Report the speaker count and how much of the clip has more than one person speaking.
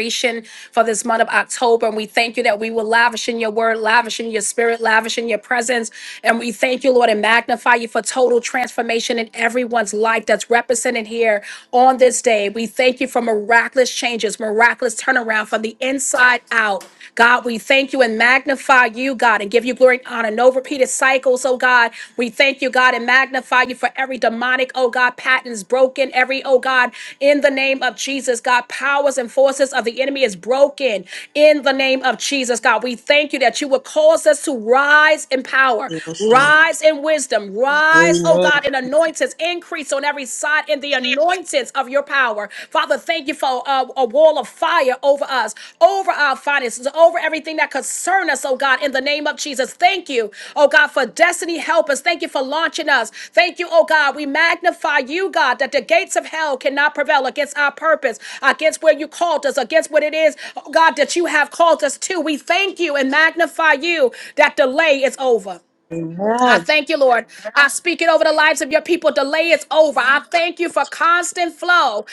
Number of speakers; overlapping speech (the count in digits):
2, about 2%